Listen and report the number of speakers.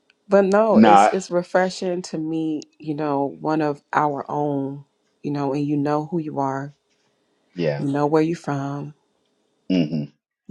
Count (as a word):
two